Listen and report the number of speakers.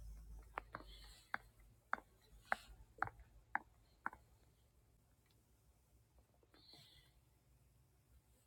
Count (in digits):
0